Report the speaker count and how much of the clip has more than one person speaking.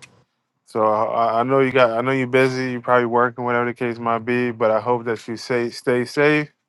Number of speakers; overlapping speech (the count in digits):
1, no overlap